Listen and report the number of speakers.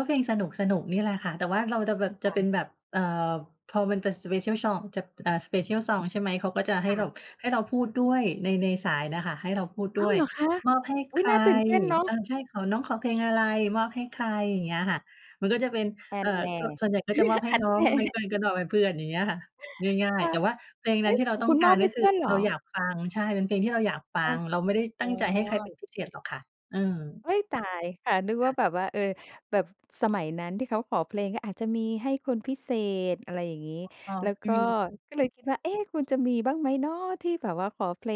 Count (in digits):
2